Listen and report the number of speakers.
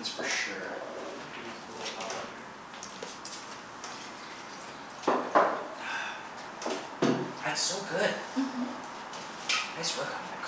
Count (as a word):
one